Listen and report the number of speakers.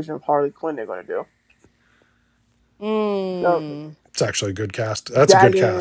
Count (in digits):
3